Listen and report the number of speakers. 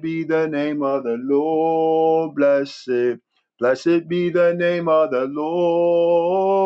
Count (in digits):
1